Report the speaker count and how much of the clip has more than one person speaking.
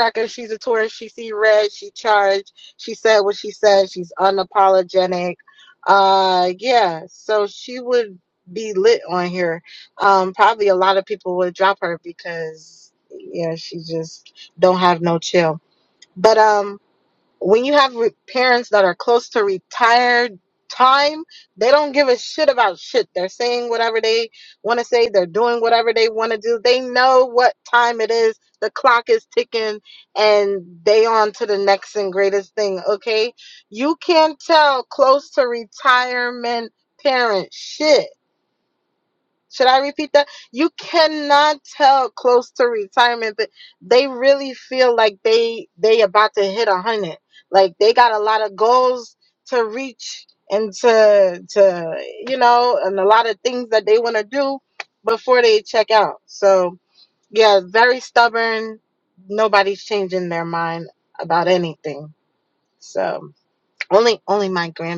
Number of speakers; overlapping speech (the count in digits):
1, no overlap